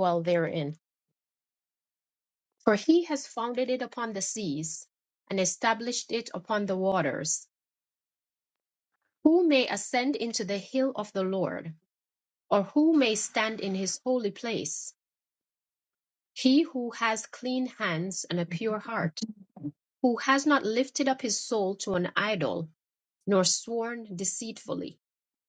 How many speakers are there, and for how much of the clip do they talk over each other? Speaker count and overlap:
1, no overlap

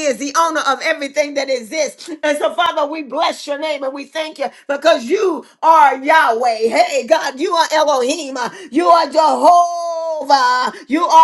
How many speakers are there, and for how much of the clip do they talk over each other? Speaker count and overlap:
1, no overlap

